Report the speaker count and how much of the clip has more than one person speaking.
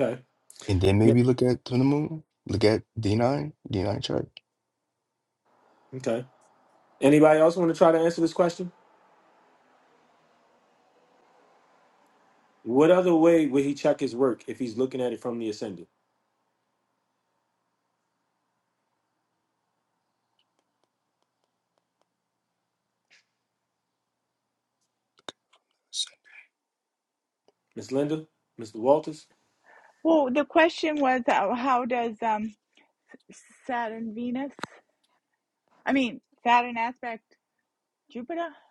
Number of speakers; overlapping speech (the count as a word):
three, under 1%